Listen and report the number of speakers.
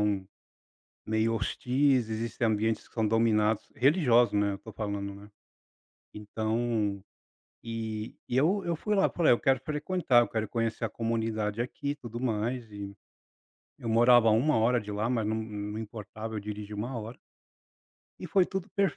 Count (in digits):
1